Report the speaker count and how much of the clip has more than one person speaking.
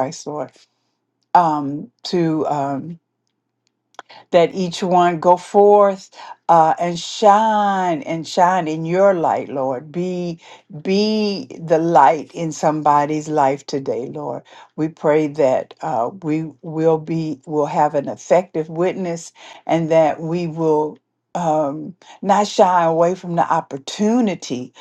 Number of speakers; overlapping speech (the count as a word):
one, no overlap